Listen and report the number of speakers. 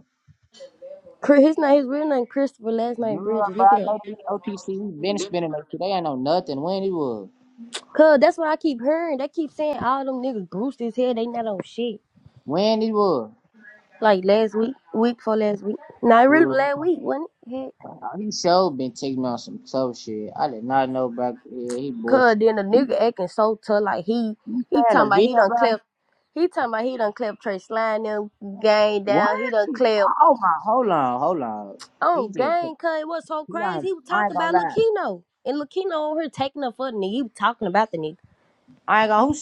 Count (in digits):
2